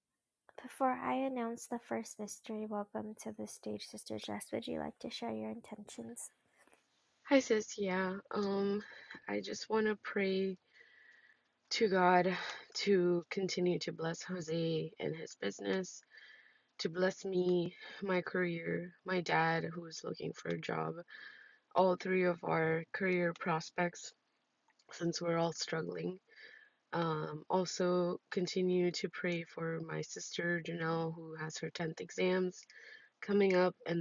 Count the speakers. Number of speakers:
2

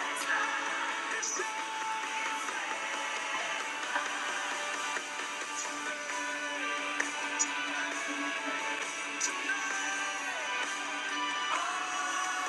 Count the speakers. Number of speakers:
0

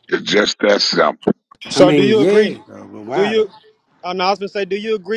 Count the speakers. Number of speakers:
3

